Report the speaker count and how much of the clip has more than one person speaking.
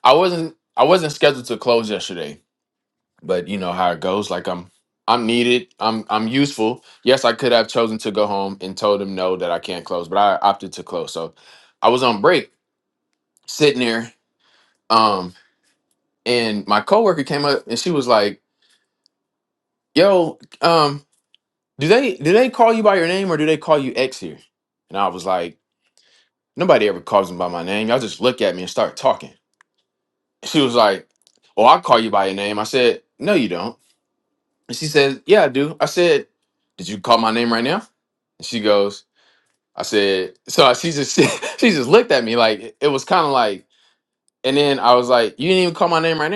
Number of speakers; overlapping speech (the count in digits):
1, no overlap